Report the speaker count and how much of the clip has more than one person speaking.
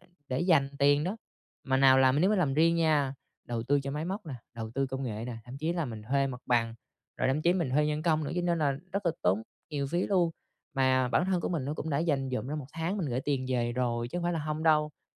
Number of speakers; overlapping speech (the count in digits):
1, no overlap